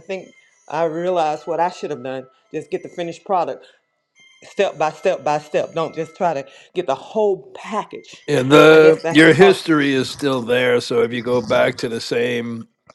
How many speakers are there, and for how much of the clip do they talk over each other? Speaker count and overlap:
2, about 7%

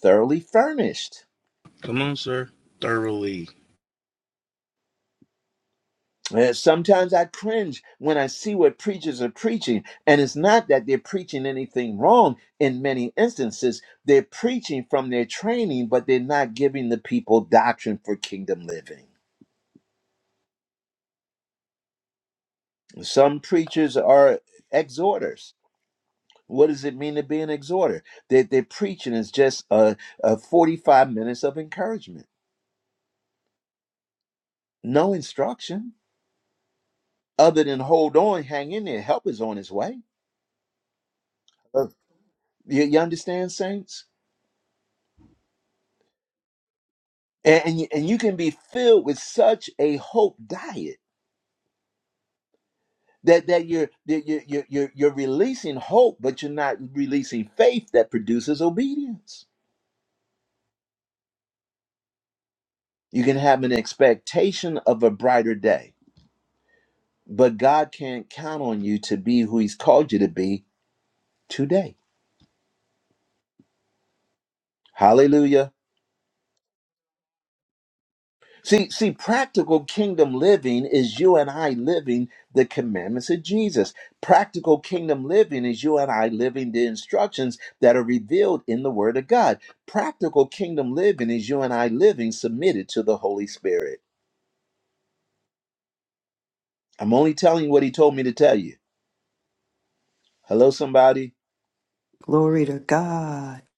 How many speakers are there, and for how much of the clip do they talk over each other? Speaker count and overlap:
3, no overlap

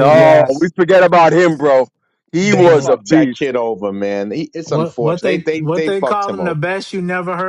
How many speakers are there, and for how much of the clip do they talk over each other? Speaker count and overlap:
3, about 45%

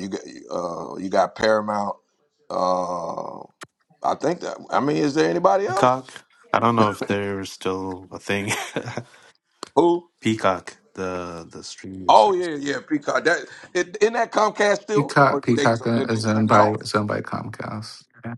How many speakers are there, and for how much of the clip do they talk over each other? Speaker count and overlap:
3, about 13%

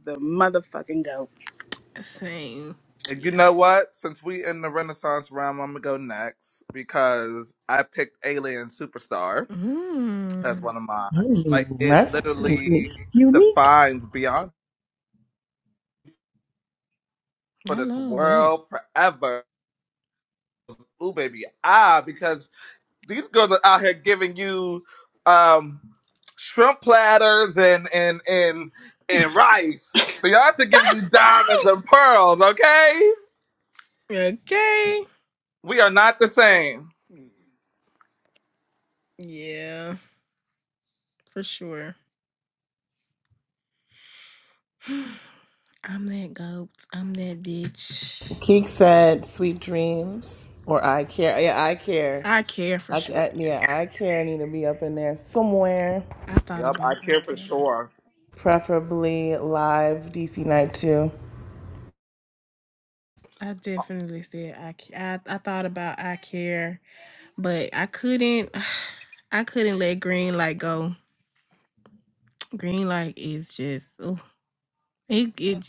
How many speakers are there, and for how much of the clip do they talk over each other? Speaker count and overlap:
4, about 6%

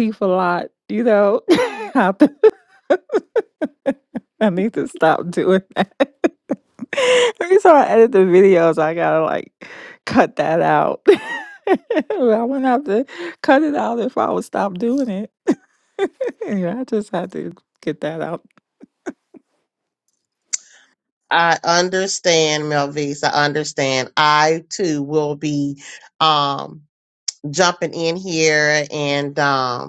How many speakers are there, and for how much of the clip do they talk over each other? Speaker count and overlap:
2, no overlap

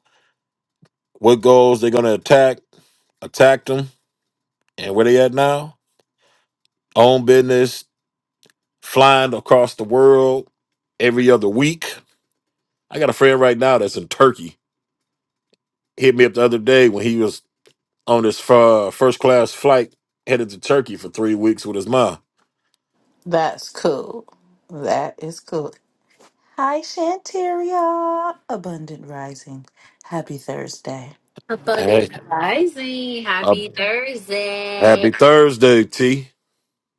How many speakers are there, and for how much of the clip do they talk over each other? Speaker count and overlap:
3, about 1%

